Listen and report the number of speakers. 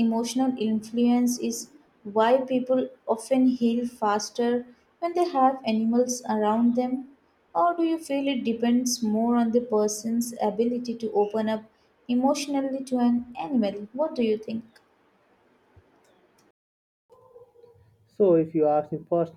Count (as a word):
two